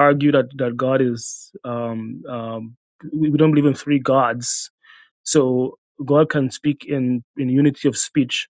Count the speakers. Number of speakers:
1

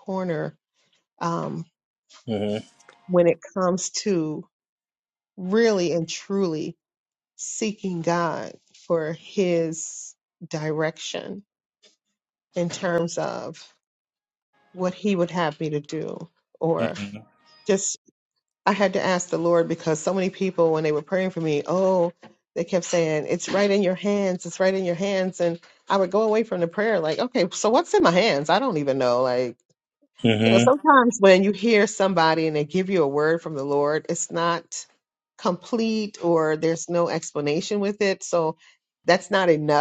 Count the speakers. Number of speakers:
2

